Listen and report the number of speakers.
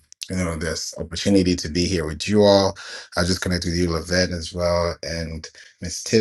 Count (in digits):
1